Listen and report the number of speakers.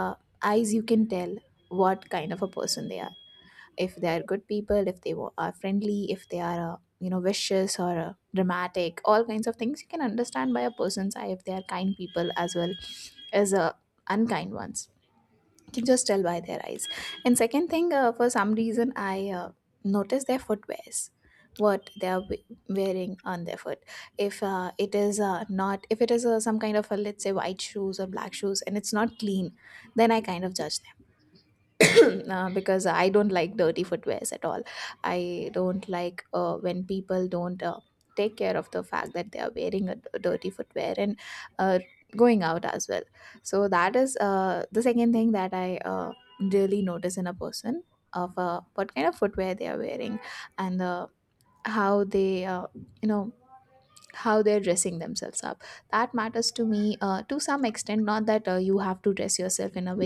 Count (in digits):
1